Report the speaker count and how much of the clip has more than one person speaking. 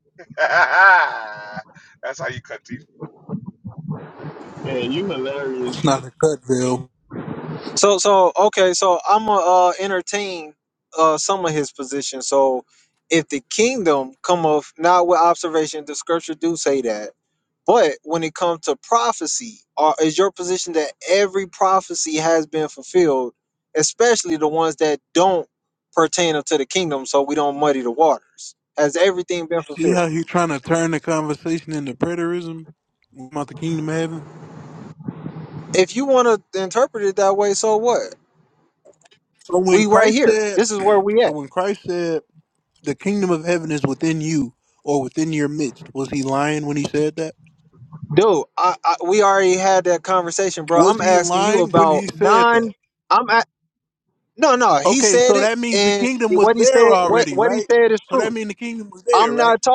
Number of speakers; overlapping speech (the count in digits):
4, about 12%